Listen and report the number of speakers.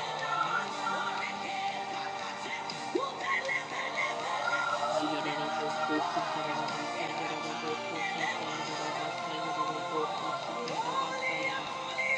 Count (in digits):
0